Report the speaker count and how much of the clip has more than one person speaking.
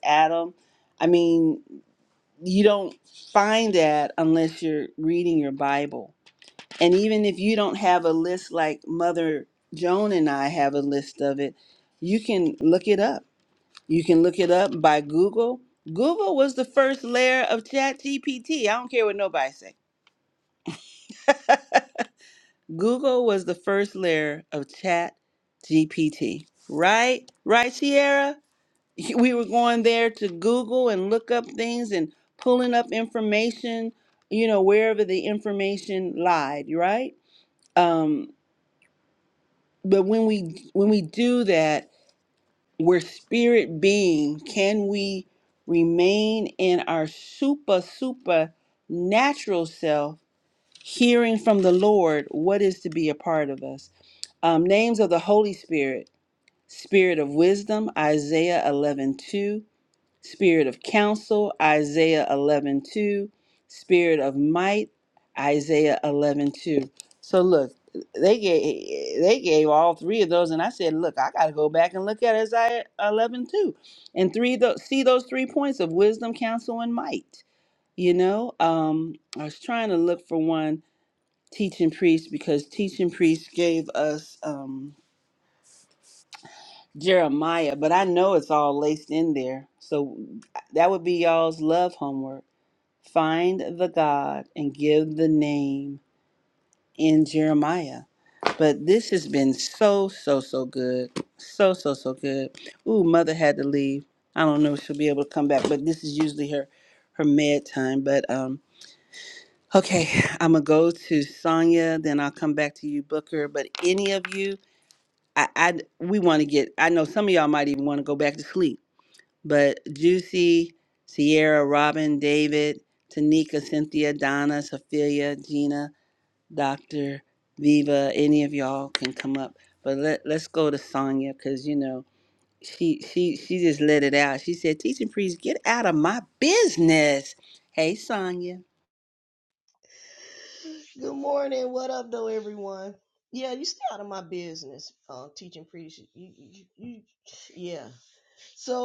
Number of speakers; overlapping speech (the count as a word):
two, no overlap